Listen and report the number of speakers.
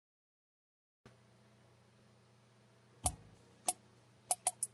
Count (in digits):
0